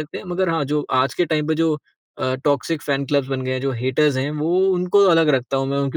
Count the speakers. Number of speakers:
1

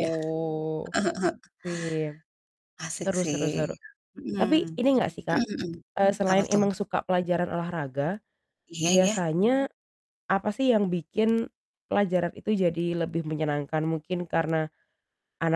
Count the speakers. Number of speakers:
2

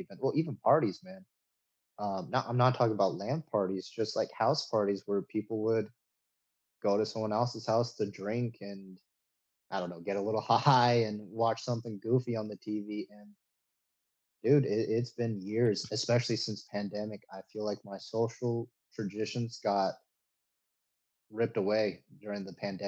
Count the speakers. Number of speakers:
1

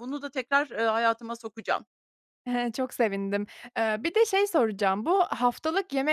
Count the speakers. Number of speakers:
2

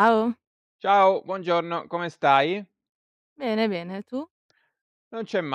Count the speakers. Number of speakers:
2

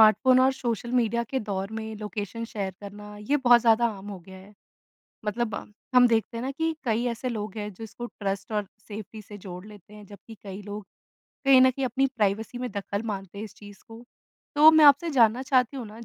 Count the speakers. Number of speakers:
1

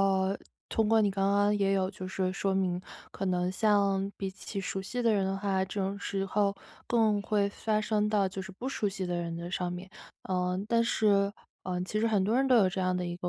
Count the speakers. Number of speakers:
1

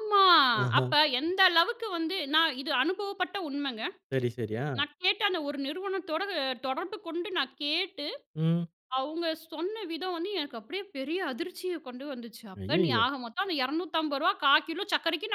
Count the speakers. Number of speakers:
2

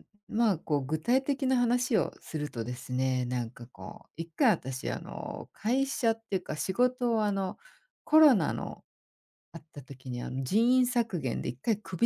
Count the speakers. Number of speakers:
1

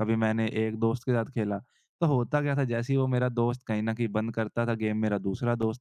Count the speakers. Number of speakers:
1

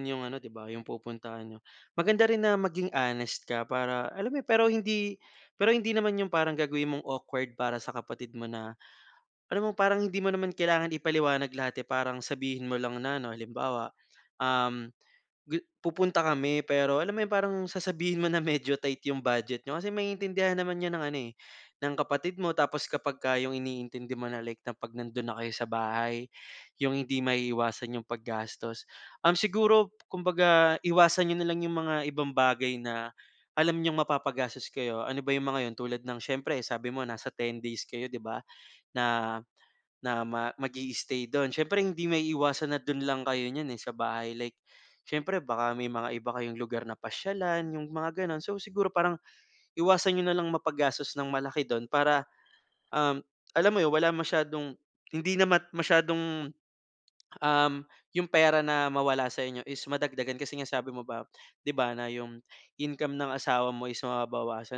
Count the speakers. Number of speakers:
1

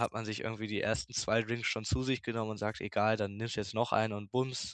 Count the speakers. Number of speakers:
1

